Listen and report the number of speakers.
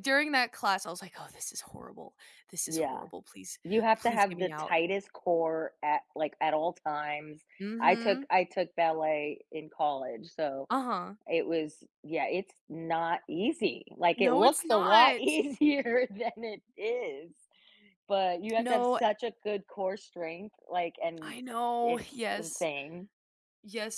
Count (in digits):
2